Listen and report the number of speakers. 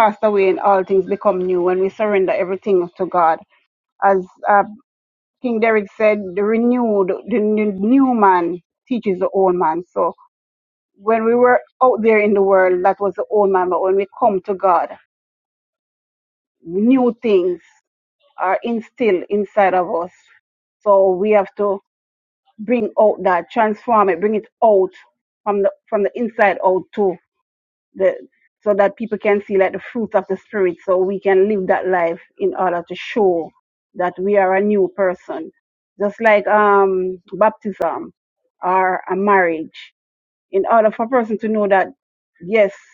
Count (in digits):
1